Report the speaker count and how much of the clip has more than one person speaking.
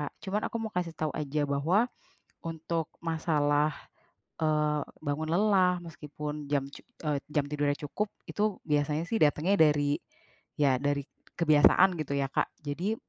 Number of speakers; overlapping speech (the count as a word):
one, no overlap